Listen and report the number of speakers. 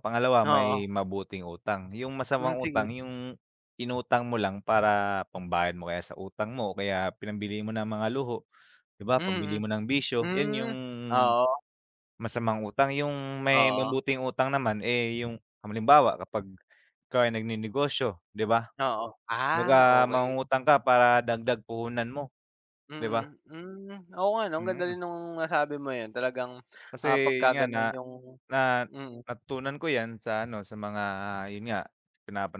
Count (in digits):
2